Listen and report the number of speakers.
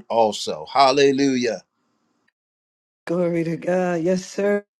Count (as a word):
two